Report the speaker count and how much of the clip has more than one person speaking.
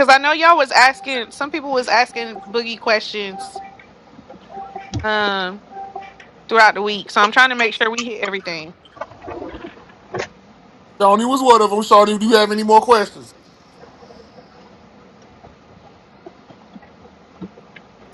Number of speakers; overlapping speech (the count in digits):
2, no overlap